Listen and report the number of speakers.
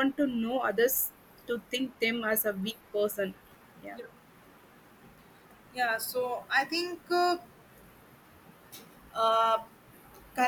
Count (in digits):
2